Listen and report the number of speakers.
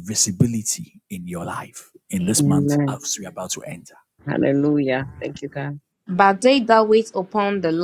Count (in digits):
3